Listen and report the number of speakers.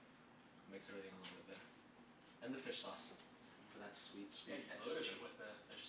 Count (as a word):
two